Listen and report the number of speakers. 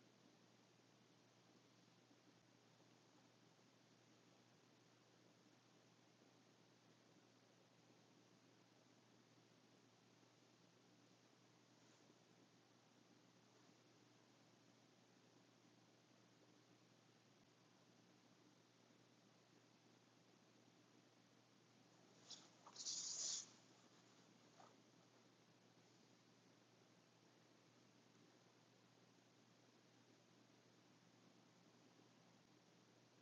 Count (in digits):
0